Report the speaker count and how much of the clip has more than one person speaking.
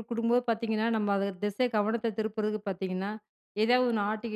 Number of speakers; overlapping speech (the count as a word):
one, no overlap